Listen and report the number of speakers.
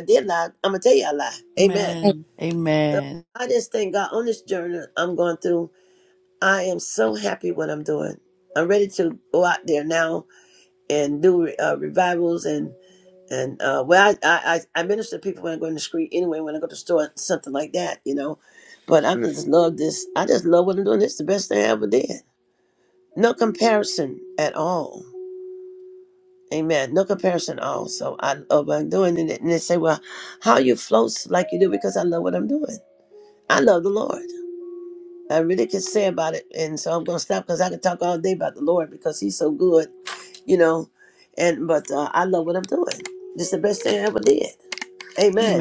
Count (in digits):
2